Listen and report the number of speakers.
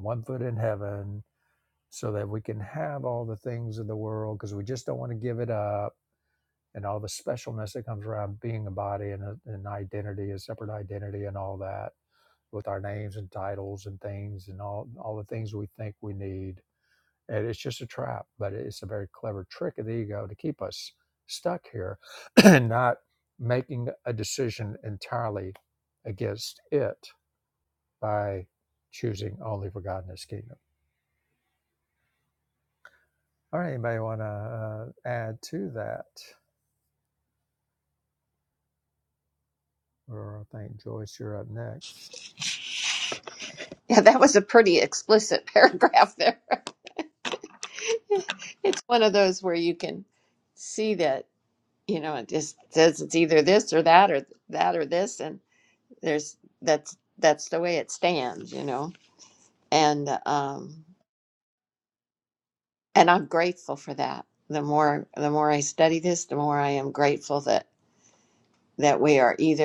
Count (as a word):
two